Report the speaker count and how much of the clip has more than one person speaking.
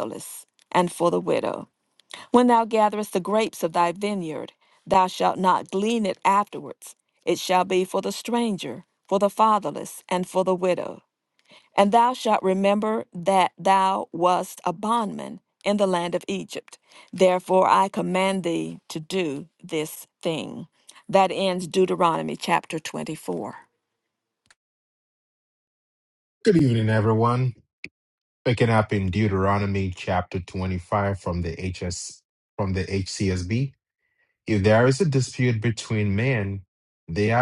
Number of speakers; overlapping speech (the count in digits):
2, no overlap